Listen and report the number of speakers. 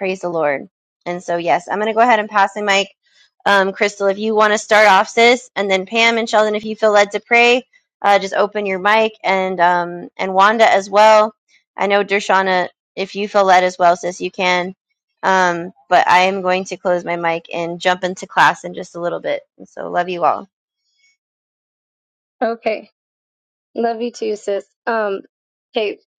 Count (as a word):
two